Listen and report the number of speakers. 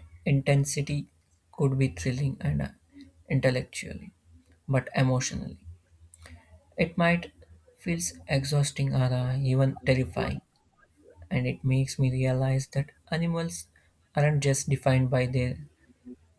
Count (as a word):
one